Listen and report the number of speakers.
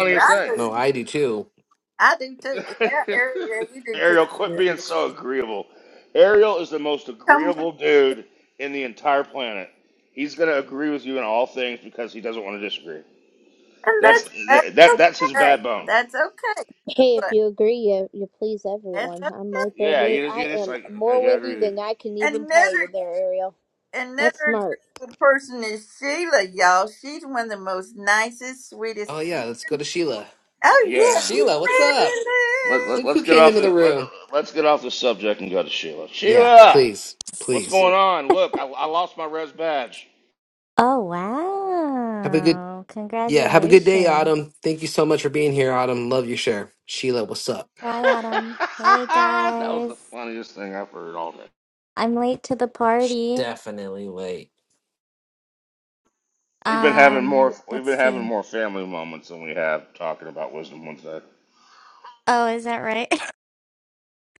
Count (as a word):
five